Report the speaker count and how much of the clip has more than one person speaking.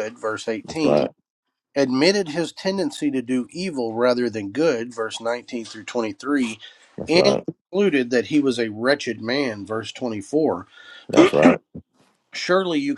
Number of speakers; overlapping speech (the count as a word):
two, about 6%